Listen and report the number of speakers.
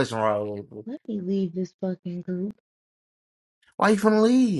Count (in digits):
2